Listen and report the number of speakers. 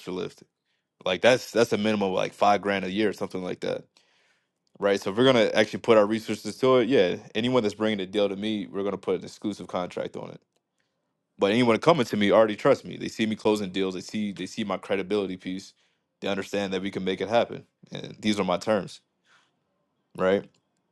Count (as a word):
one